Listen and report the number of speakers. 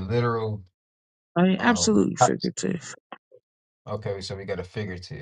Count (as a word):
two